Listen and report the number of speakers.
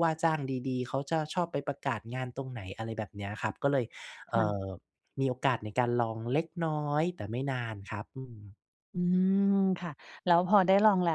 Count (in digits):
2